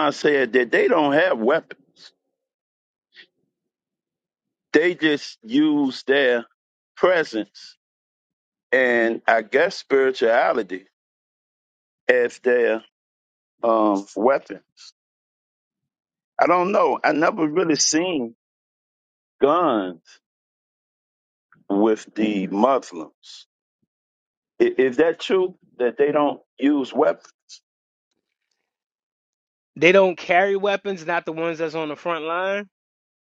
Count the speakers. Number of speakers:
2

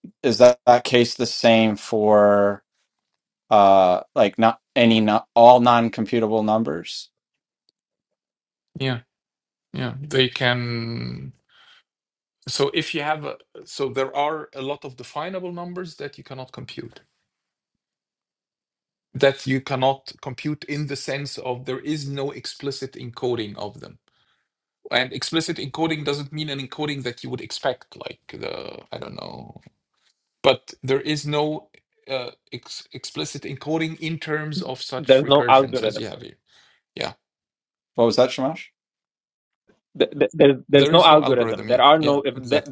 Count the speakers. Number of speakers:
3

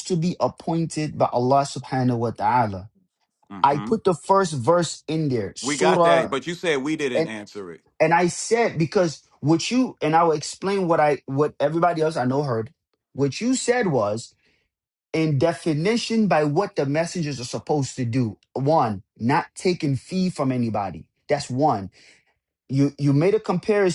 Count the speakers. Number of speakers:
2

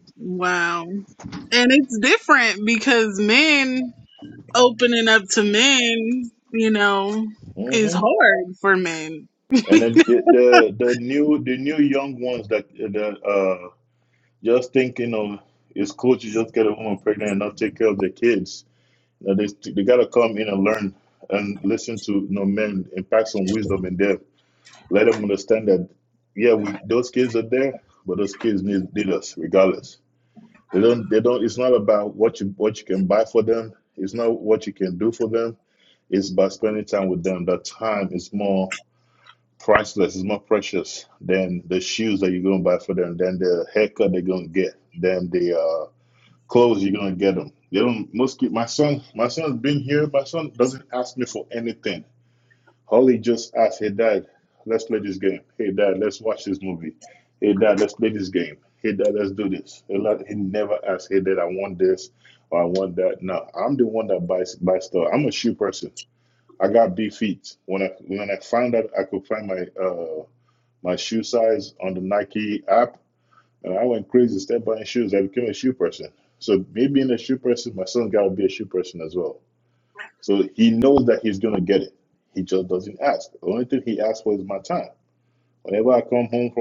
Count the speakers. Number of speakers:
2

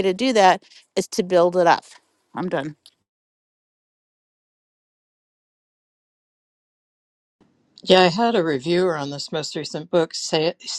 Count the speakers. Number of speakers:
2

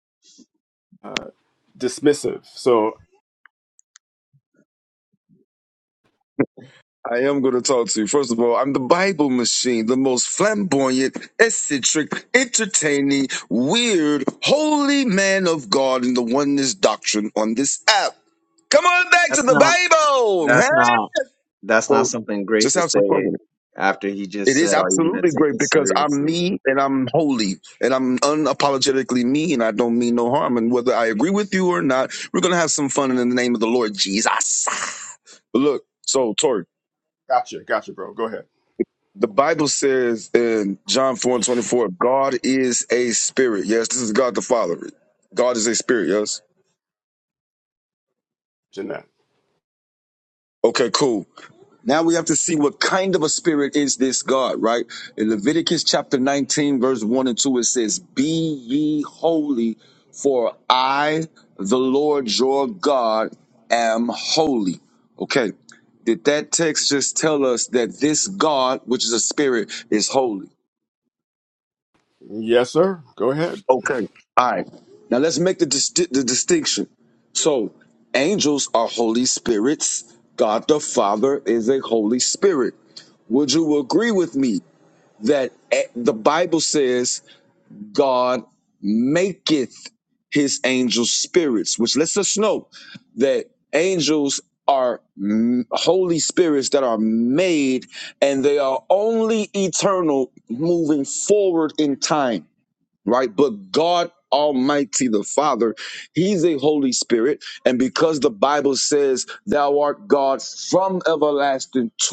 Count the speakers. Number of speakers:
3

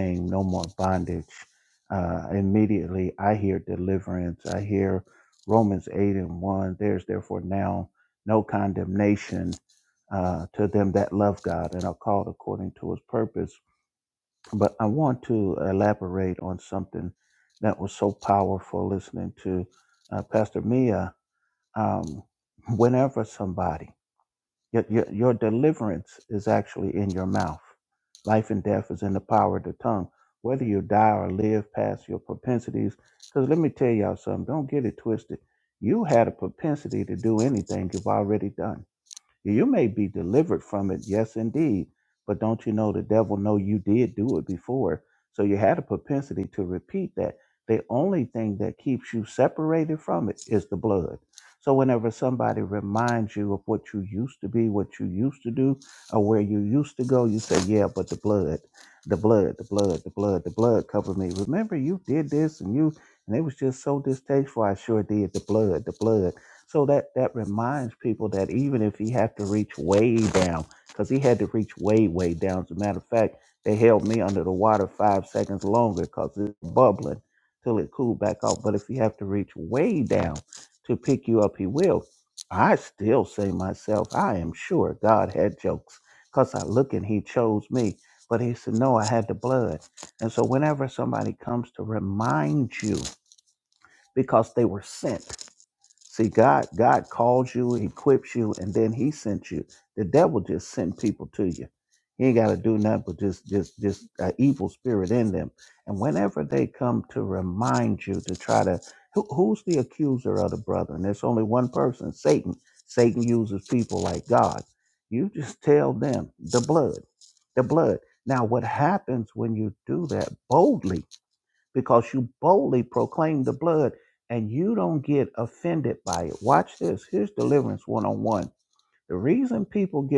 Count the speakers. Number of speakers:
1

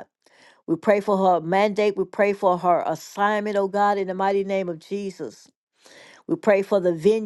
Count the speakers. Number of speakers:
1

